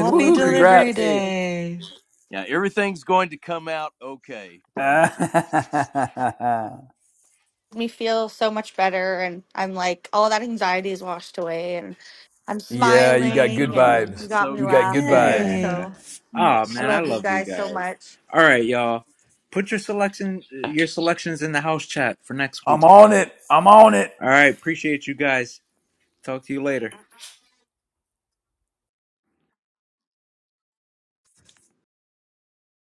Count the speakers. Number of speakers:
5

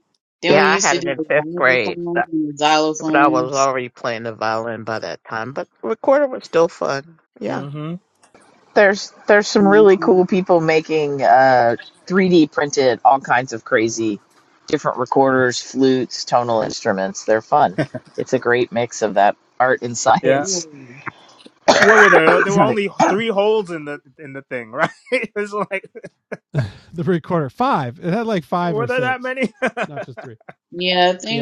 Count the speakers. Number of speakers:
5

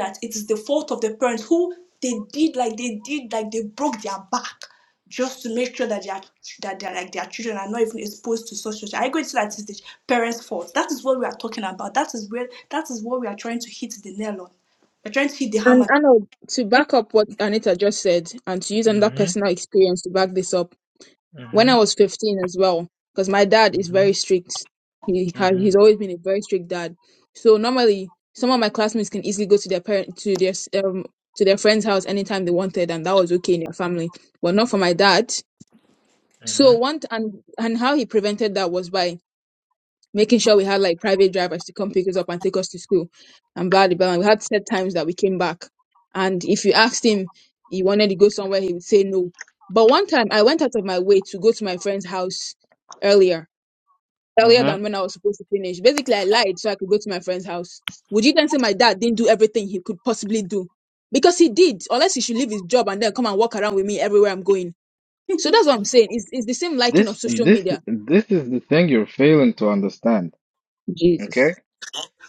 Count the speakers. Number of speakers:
3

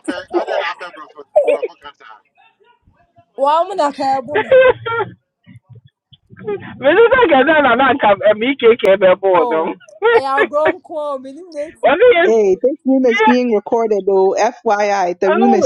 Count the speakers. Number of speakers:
4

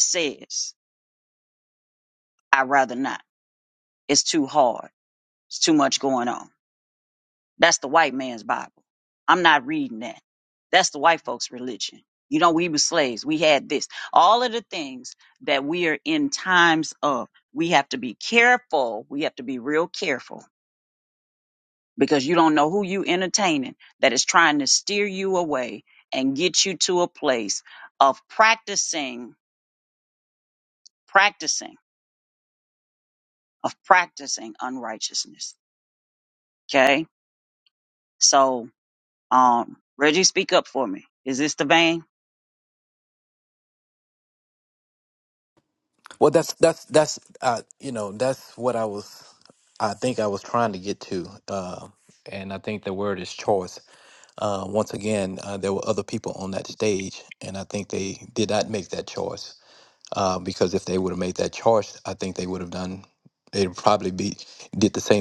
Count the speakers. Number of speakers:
2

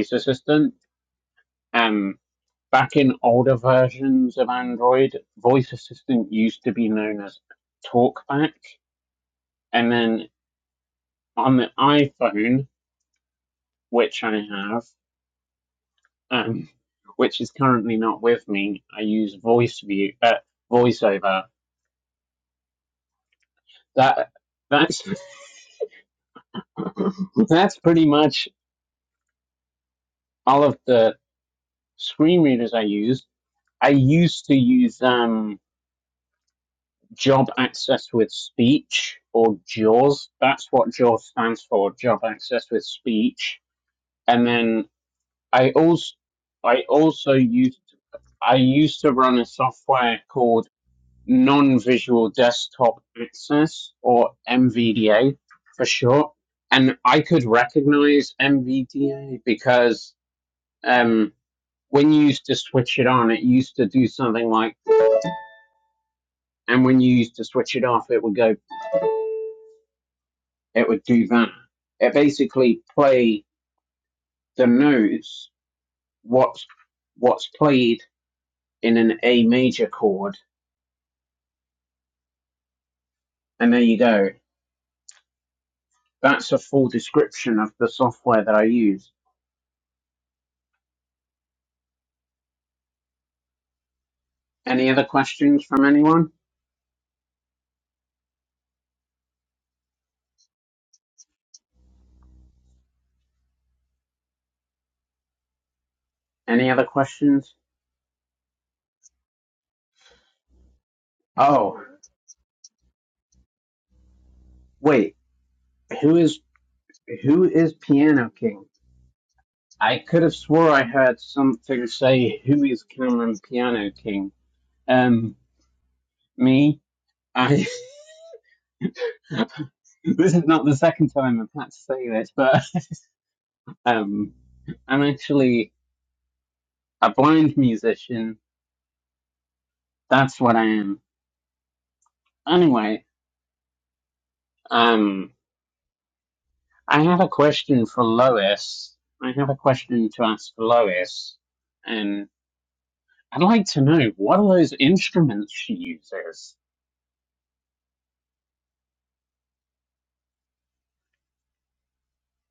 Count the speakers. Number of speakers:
1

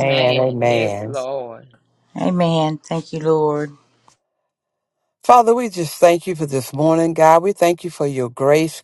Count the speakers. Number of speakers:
3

